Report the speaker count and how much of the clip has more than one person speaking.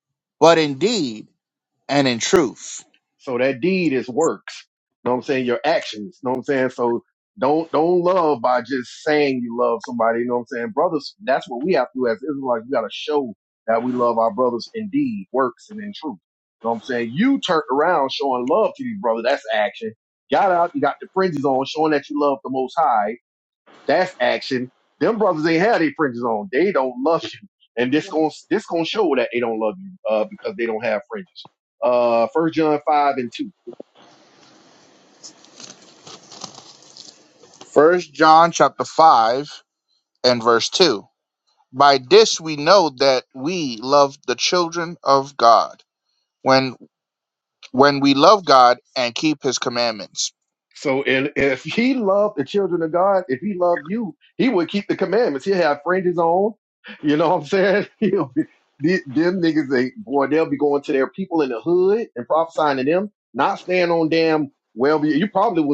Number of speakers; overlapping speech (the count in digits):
2, no overlap